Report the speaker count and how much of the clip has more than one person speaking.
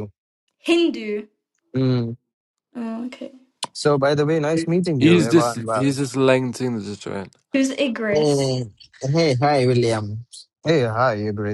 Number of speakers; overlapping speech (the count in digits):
4, about 10%